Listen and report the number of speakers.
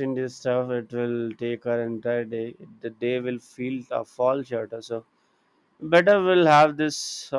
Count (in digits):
1